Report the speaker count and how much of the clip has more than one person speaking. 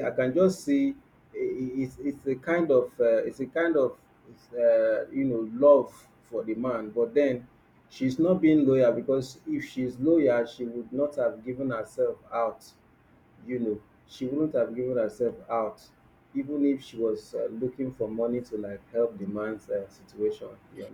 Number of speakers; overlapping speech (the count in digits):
1, no overlap